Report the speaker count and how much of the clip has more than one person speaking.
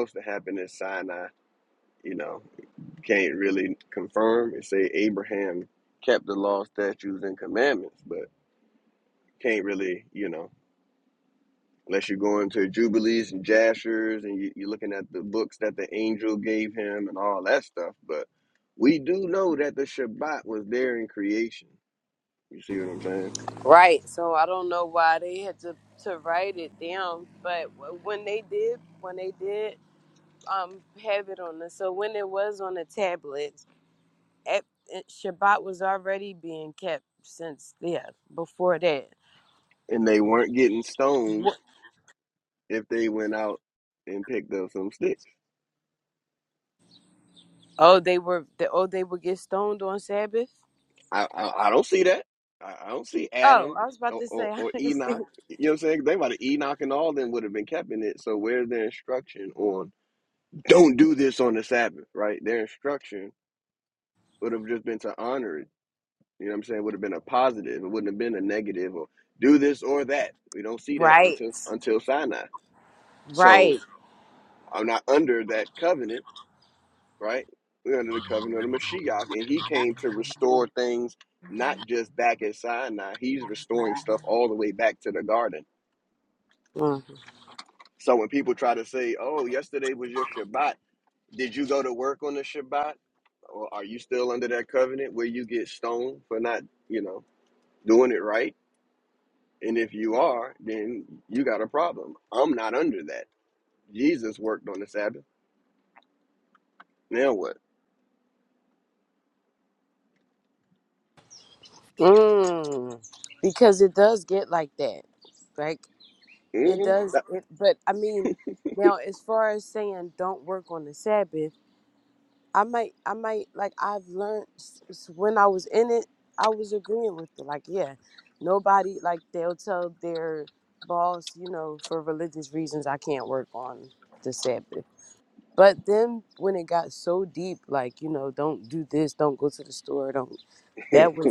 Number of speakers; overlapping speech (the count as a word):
two, about 2%